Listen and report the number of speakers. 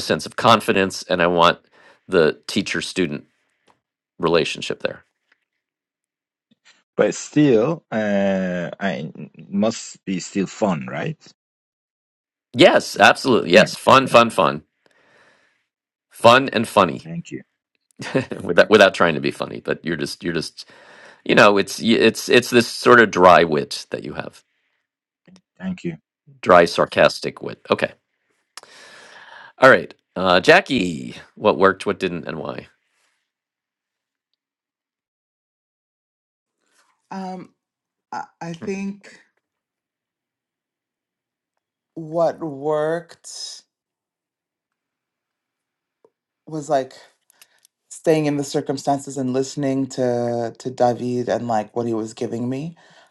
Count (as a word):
three